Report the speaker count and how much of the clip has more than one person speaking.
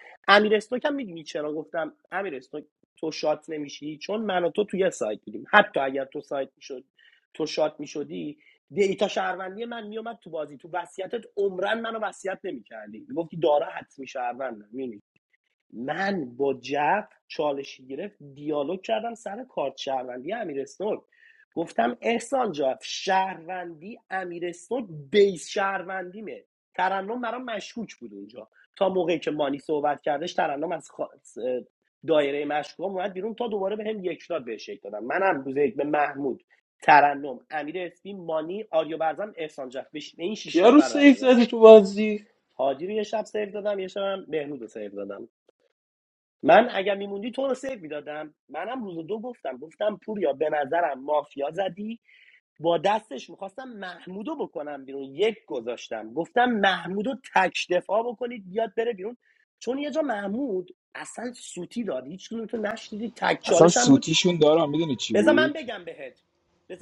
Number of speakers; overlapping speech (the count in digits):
3, about 3%